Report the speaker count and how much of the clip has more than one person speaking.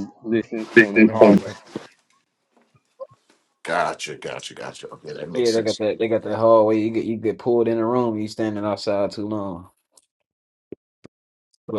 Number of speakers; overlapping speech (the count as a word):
three, about 8%